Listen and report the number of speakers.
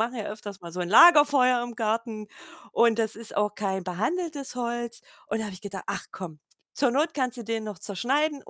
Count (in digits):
1